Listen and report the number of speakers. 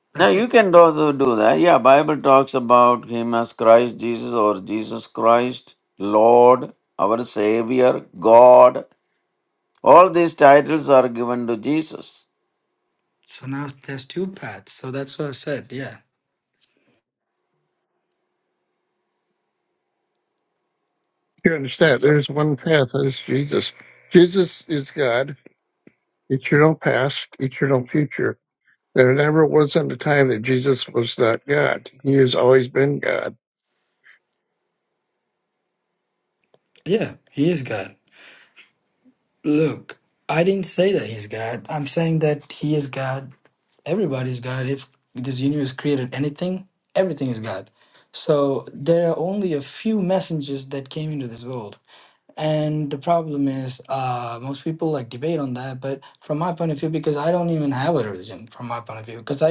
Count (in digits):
3